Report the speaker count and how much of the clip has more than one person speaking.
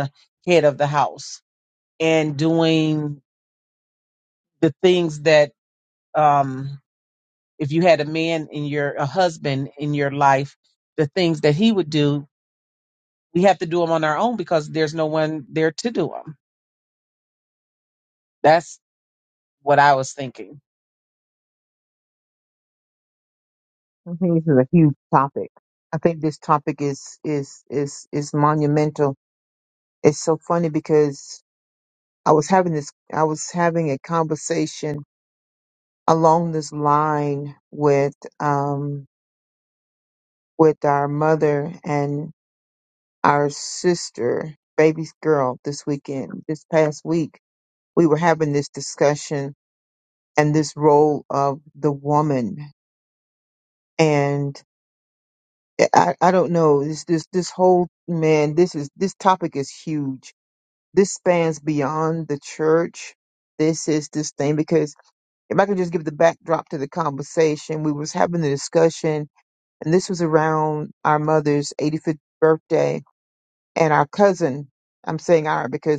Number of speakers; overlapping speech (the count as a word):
two, no overlap